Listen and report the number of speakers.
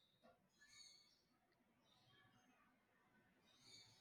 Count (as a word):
zero